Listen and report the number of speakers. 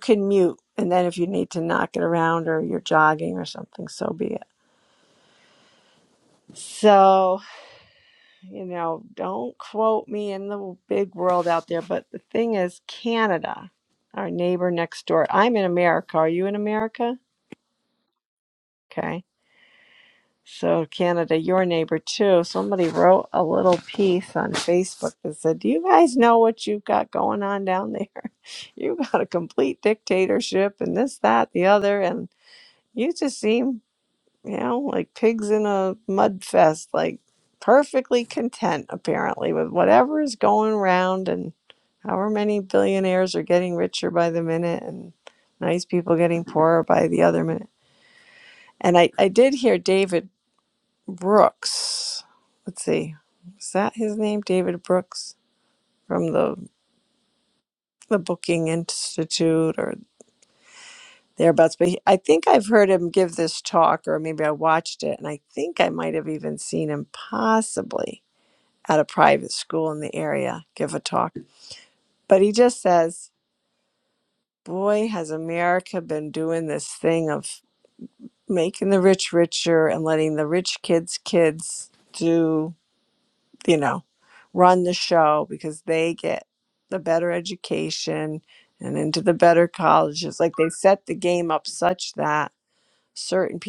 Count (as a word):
one